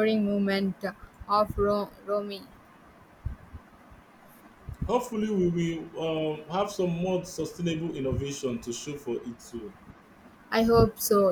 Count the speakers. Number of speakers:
2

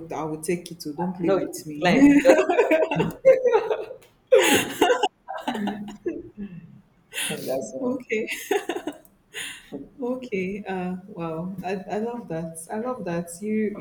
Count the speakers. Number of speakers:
2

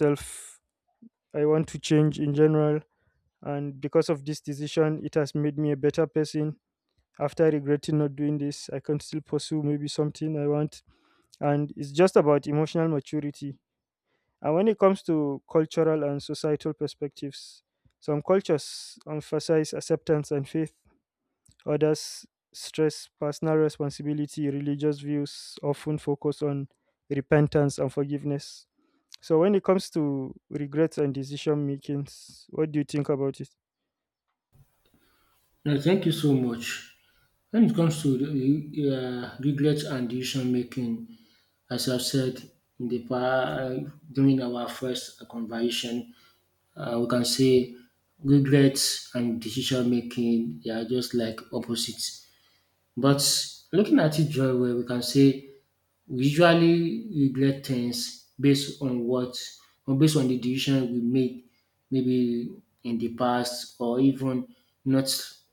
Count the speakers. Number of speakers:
2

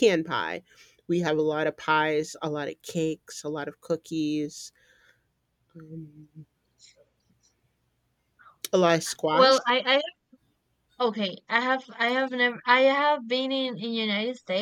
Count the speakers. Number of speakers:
2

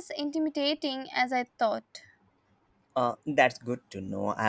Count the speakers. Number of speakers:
2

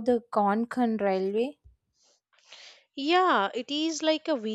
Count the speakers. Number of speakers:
2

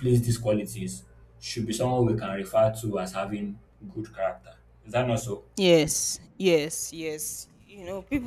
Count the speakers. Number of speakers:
2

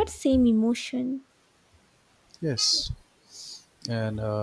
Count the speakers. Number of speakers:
2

